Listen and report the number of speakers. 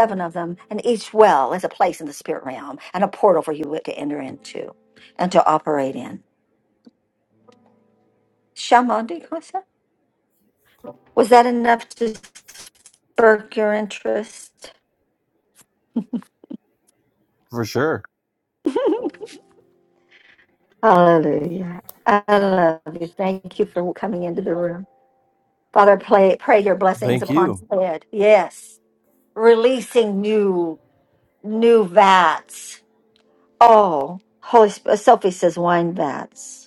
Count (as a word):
two